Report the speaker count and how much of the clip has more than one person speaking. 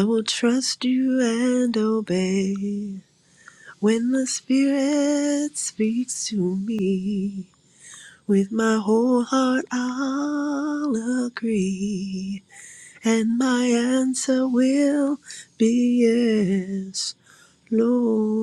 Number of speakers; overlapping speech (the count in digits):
1, no overlap